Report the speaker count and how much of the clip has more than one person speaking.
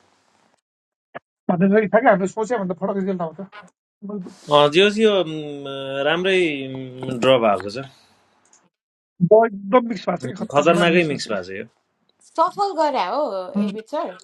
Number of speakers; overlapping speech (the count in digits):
3, about 8%